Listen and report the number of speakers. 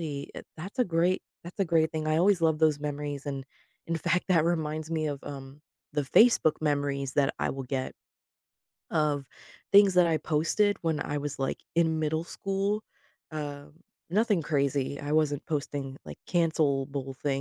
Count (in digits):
1